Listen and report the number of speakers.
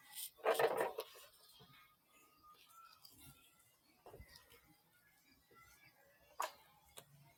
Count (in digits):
0